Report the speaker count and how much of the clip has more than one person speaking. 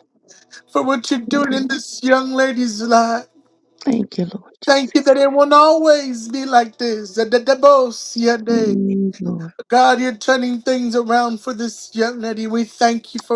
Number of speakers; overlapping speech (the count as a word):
two, about 3%